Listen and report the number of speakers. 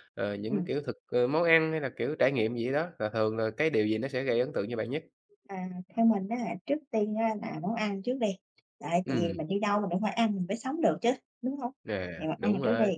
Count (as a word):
two